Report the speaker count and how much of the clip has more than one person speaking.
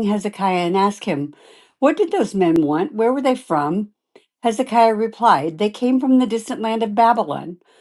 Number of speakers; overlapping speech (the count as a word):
one, no overlap